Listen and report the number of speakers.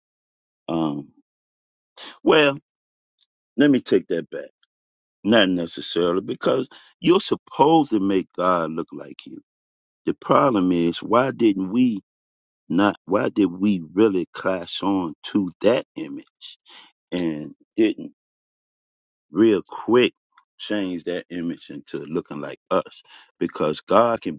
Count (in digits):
1